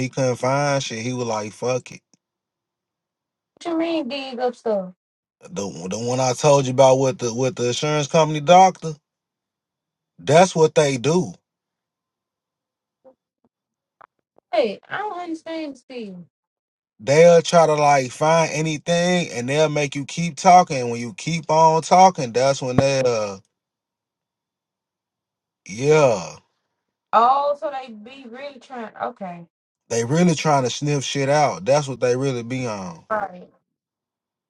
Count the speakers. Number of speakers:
two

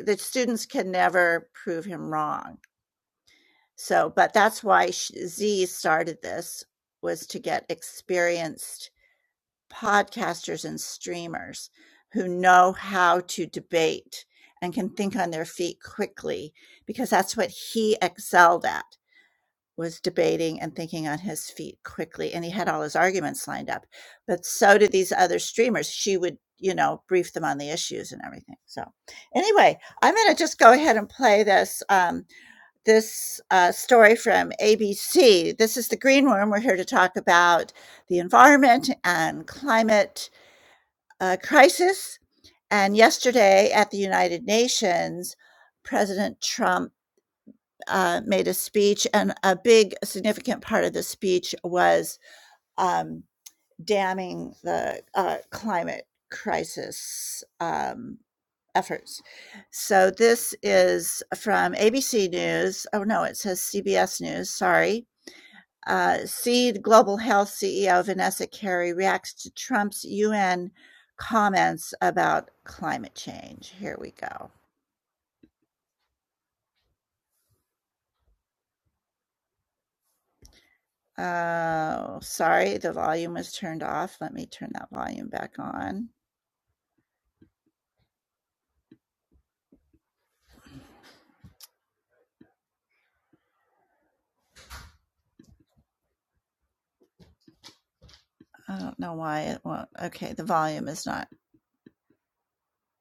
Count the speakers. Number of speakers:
one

